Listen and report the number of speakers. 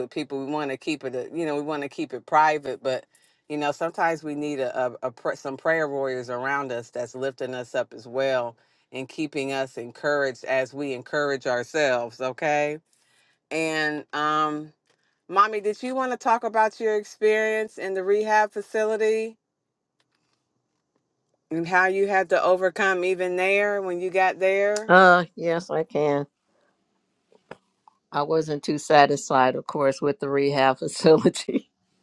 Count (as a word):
two